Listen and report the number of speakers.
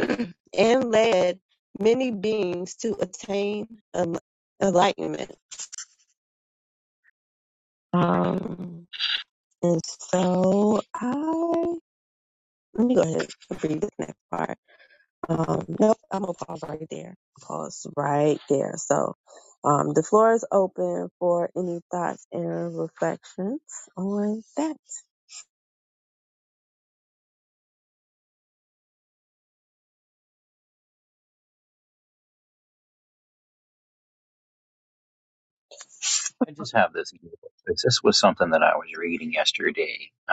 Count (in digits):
2